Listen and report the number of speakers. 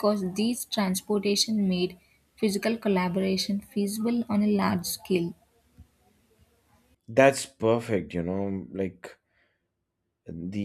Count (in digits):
2